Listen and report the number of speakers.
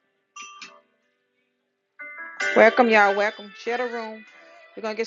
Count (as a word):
one